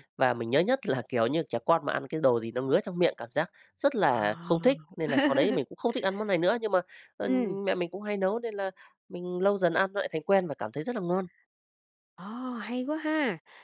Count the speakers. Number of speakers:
2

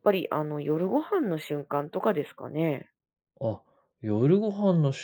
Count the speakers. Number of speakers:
2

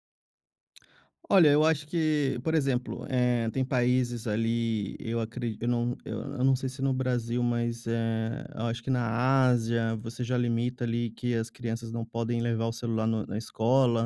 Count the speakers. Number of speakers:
1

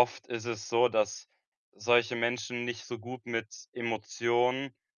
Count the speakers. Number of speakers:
1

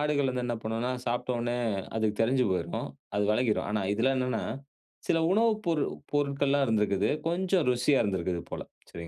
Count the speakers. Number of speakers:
1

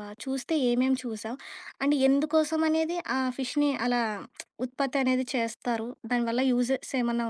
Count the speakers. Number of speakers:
1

